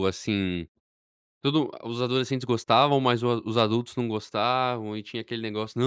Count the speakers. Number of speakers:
one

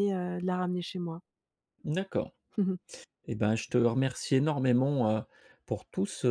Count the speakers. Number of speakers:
two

